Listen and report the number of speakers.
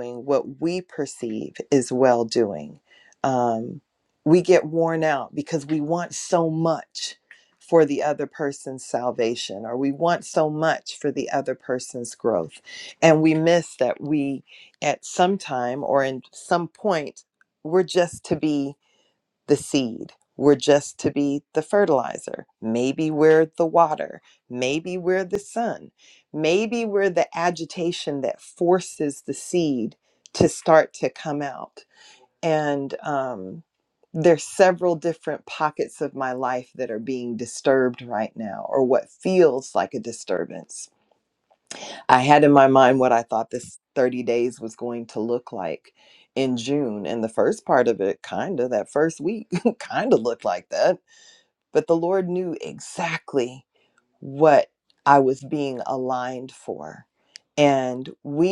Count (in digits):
1